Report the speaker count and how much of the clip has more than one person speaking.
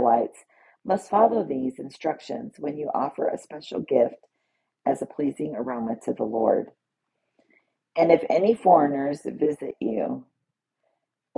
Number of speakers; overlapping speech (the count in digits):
1, no overlap